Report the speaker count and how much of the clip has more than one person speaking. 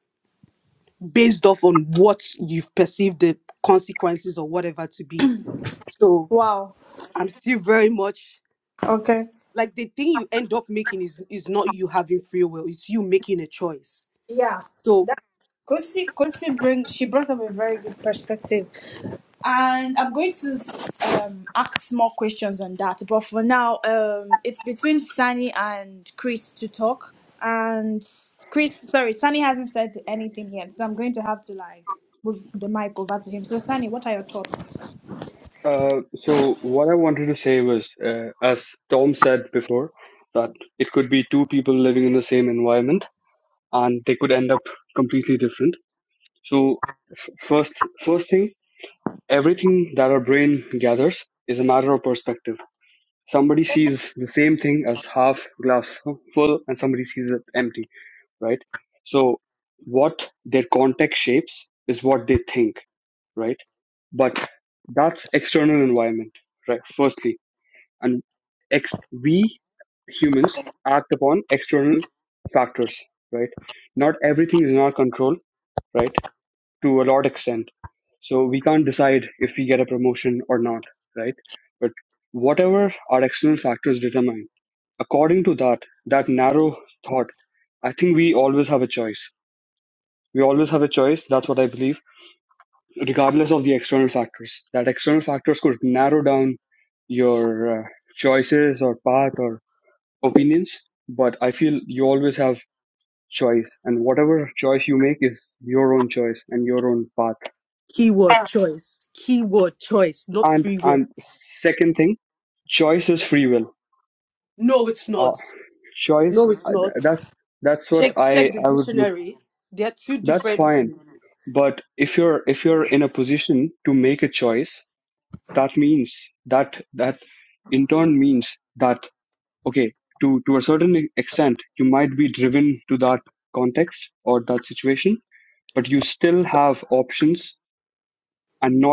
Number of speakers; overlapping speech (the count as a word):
three, about 2%